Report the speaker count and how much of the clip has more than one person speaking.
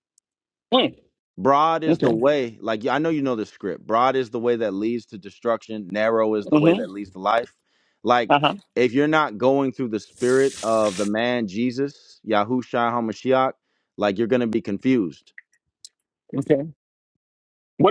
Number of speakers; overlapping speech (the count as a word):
two, about 4%